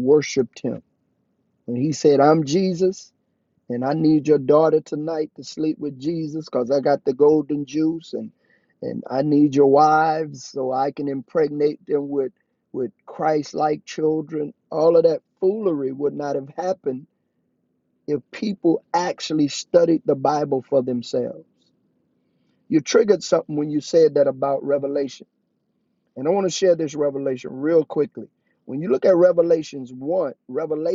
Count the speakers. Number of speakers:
1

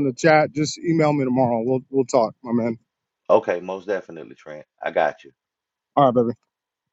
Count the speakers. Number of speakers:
2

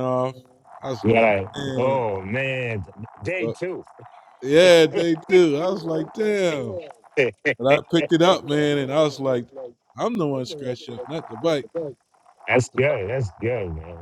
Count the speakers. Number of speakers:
2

